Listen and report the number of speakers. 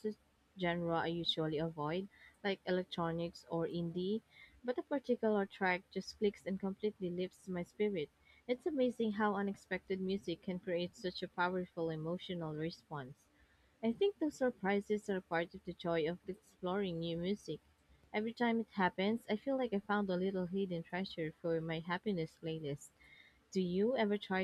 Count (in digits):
1